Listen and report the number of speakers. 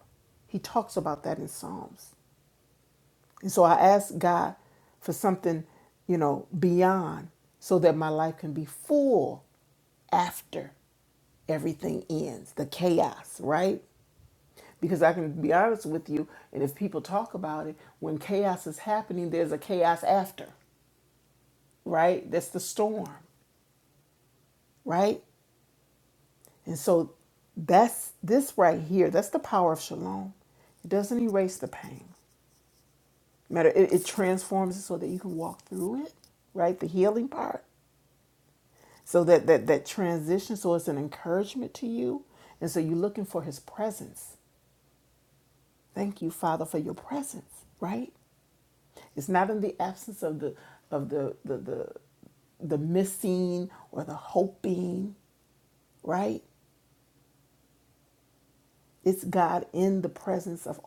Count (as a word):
one